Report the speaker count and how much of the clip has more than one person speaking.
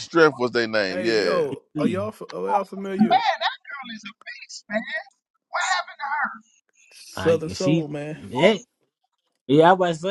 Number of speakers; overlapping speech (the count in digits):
4, about 16%